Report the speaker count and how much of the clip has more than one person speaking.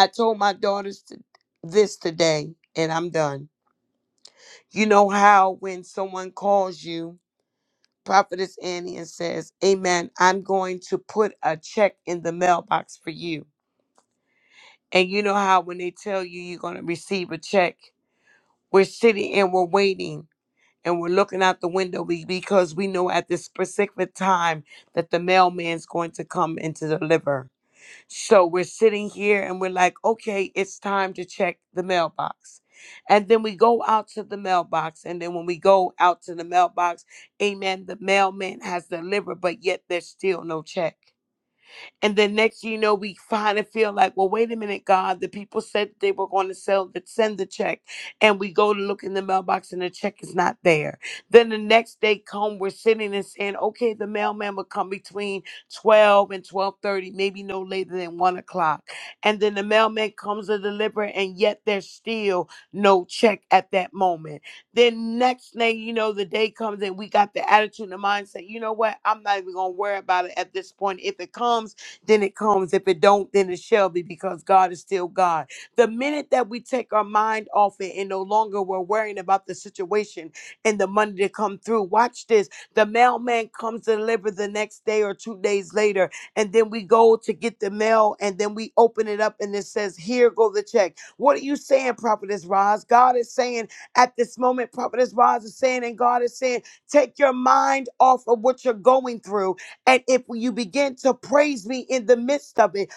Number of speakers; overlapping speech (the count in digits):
1, no overlap